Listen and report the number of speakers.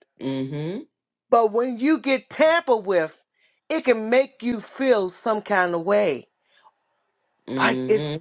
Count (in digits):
2